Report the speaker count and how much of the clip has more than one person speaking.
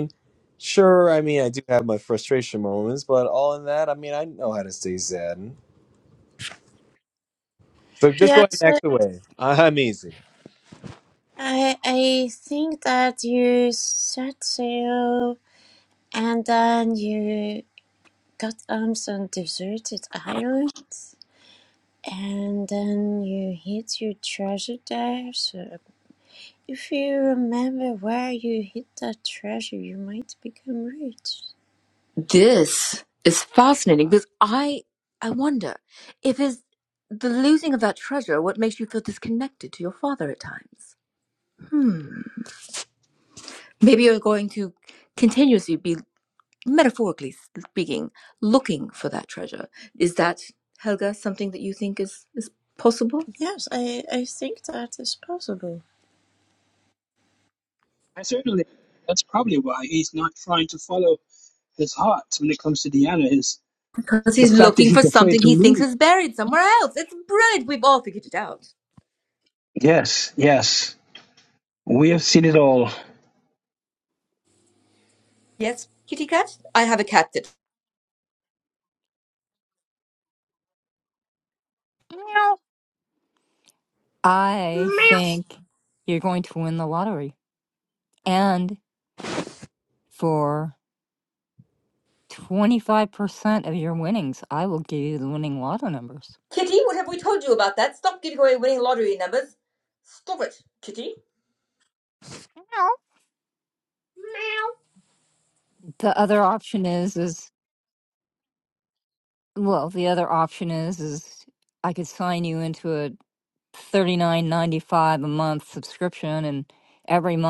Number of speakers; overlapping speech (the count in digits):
6, about 2%